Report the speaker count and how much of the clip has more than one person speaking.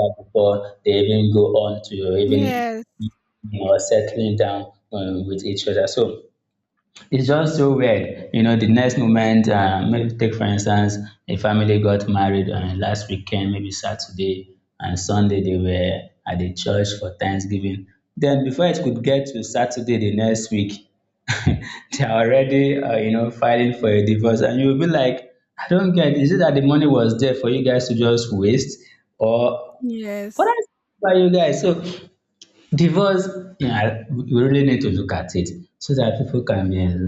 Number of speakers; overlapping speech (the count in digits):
2, about 1%